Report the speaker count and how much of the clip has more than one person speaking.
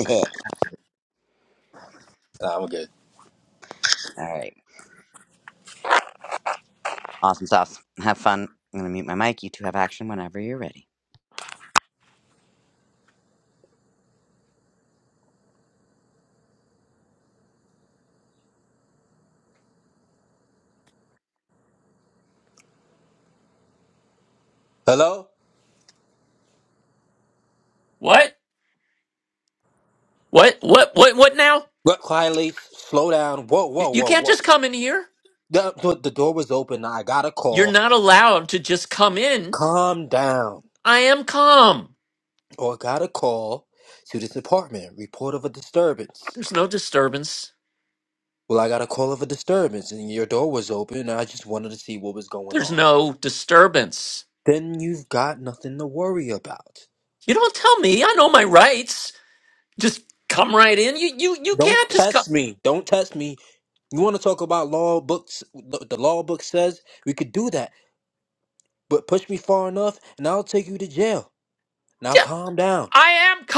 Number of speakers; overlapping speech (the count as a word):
three, about 3%